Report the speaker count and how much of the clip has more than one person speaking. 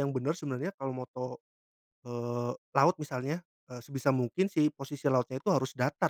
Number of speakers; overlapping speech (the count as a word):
one, no overlap